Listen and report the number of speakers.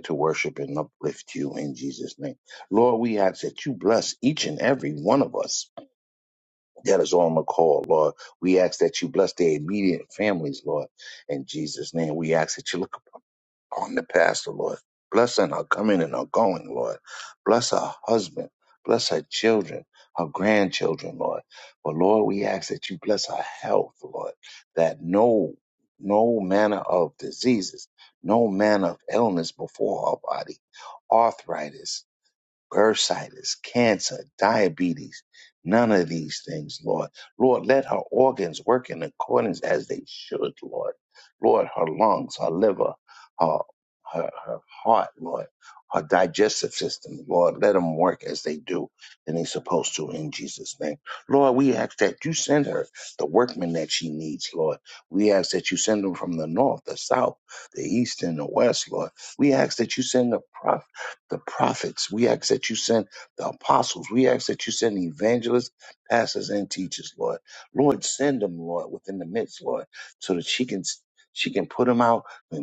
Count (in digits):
1